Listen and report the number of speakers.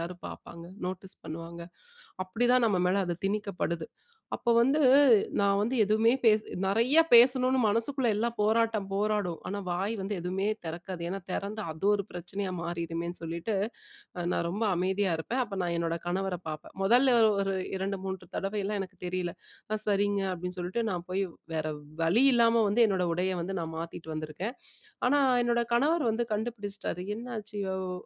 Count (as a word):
one